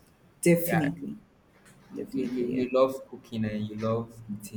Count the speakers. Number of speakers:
two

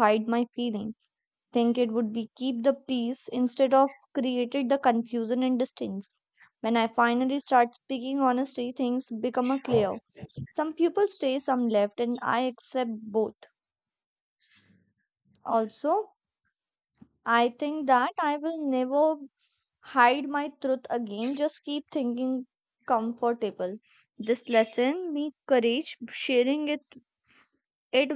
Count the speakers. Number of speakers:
one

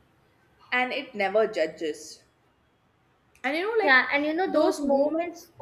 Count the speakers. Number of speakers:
two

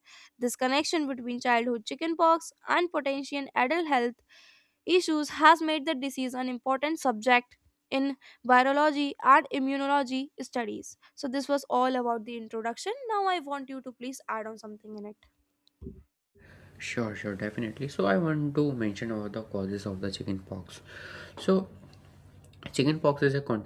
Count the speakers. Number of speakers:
two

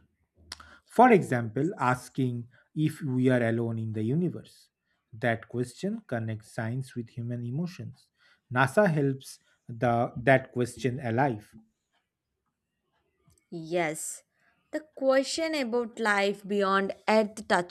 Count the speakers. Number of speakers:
two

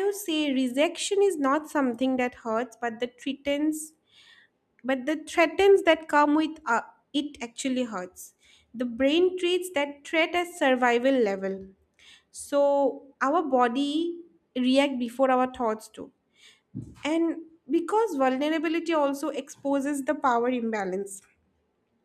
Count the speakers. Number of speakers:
one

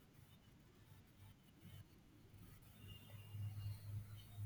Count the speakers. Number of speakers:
zero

